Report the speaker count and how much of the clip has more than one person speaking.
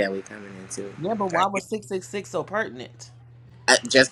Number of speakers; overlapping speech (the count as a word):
two, about 12%